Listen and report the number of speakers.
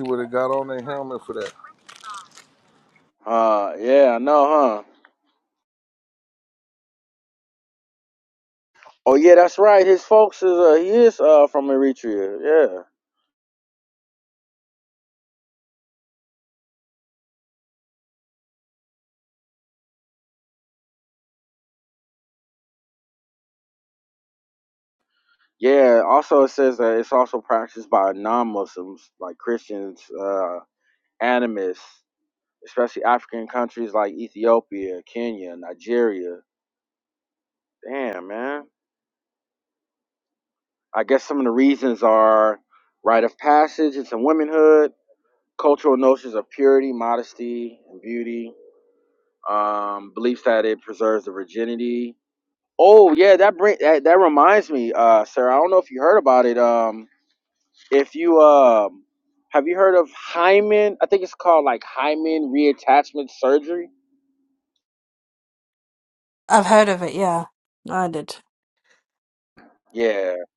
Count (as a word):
three